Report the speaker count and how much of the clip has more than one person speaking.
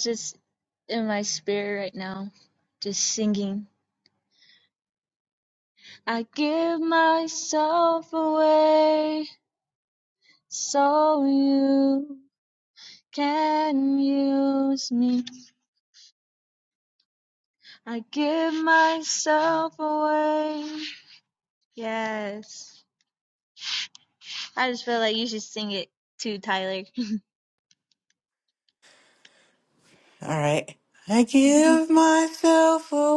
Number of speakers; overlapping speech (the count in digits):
2, about 1%